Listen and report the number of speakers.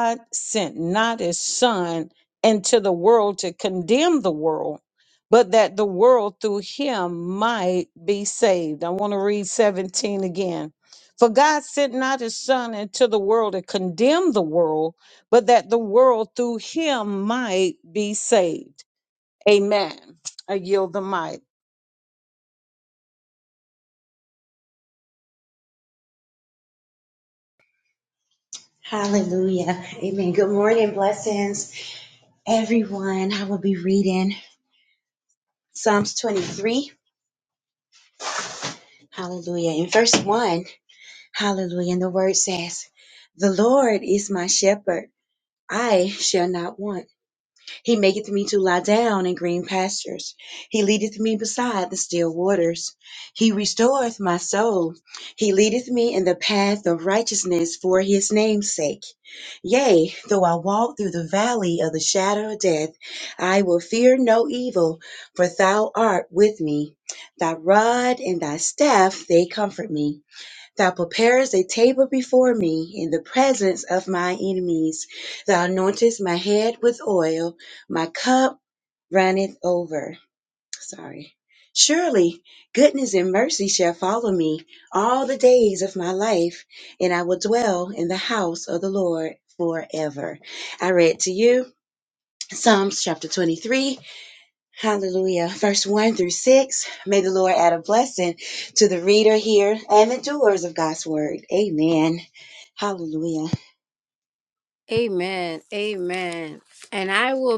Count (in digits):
3